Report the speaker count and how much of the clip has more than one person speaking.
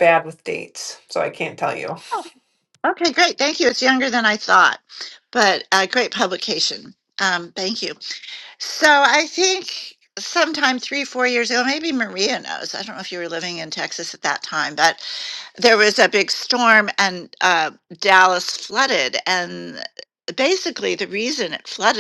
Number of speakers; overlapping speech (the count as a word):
two, no overlap